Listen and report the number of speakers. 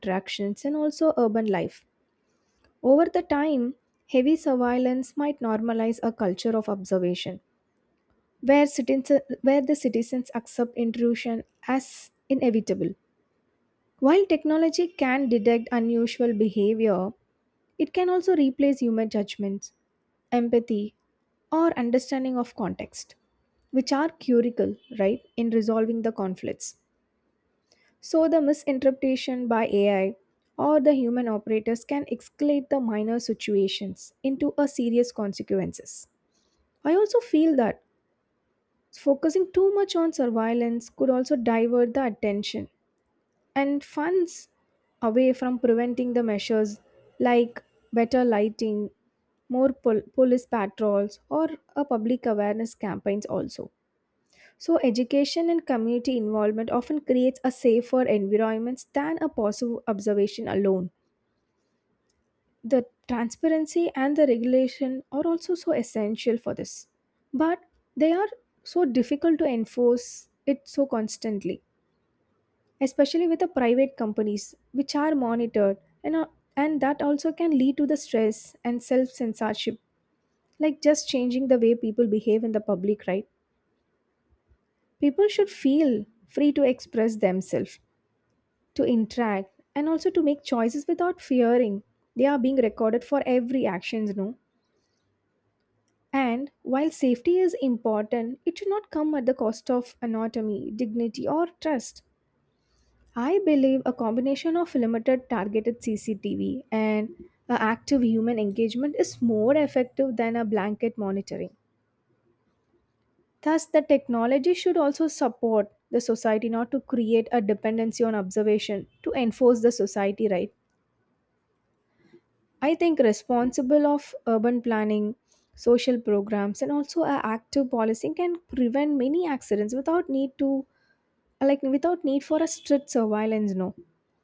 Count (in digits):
1